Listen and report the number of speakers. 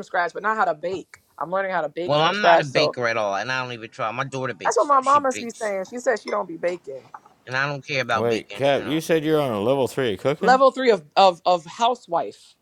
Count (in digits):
3